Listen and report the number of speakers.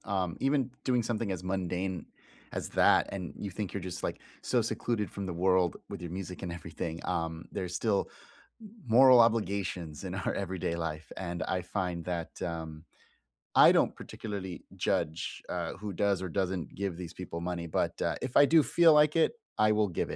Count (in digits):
1